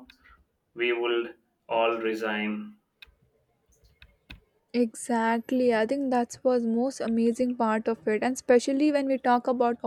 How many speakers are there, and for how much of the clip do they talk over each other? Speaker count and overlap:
2, no overlap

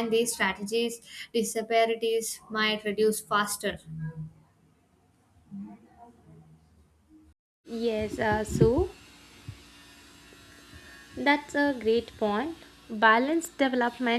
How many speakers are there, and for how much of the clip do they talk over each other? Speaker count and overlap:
2, no overlap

